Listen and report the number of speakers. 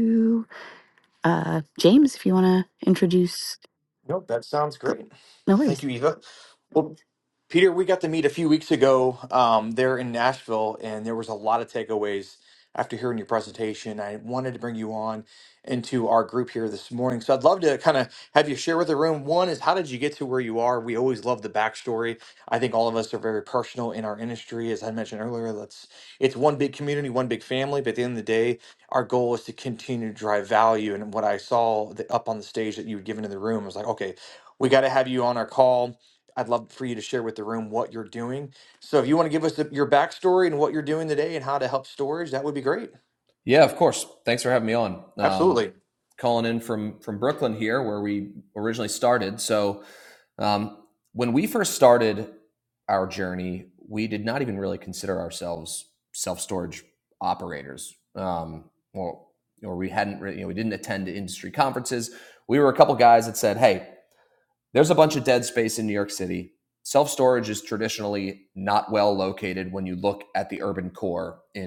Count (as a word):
three